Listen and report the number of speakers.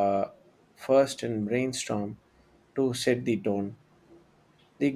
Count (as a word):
one